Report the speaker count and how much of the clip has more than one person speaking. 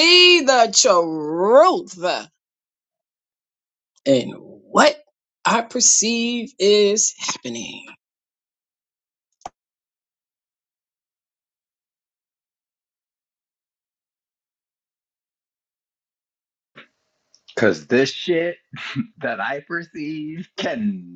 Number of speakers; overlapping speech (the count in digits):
2, no overlap